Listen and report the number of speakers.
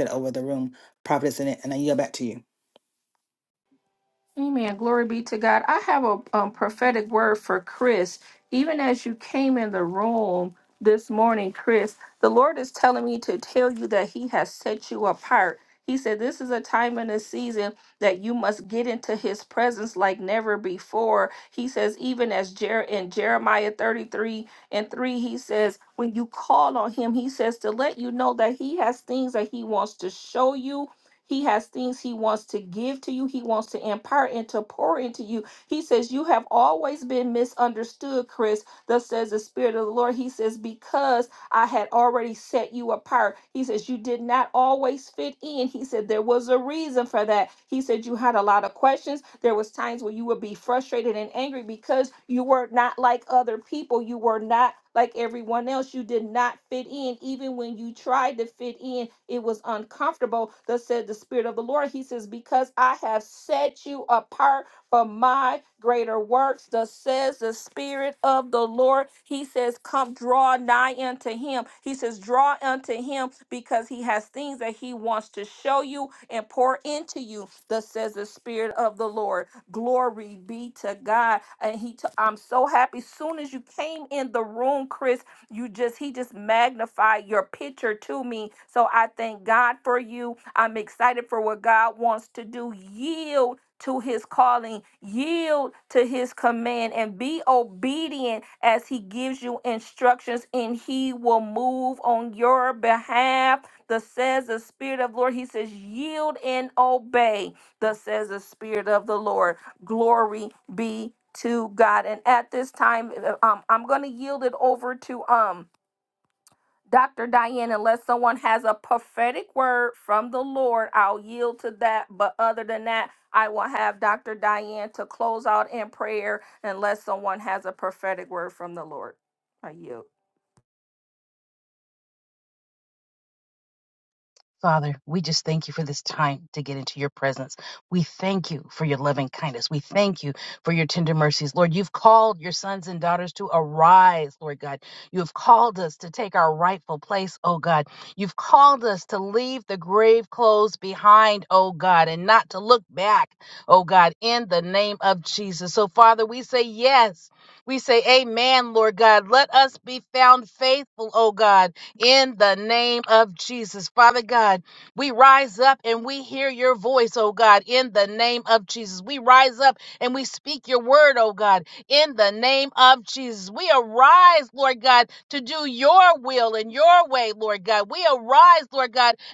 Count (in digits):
3